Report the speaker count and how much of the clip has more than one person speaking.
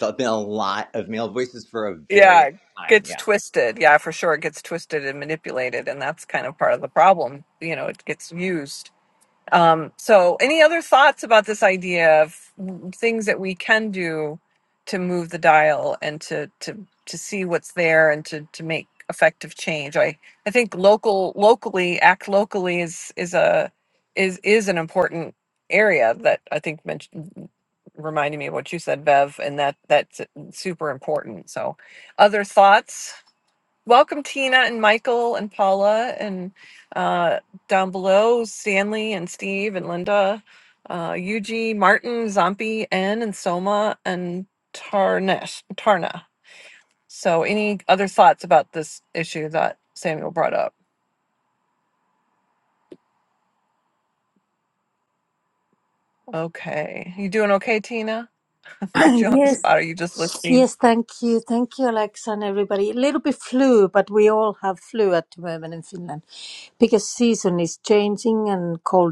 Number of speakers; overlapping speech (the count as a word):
three, about 2%